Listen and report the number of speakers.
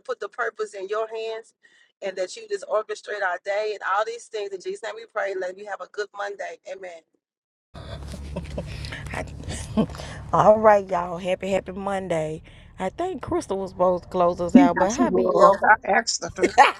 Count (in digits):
3